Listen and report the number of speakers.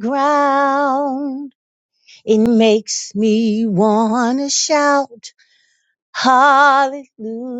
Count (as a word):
one